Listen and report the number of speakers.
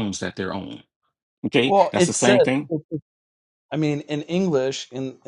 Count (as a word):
two